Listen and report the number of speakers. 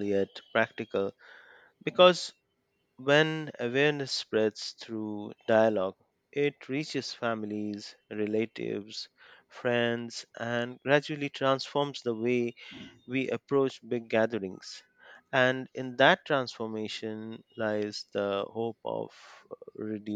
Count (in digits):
1